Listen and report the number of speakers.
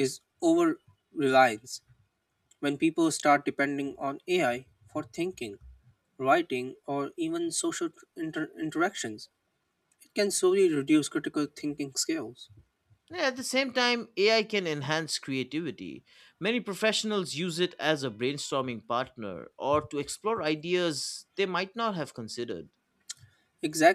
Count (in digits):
2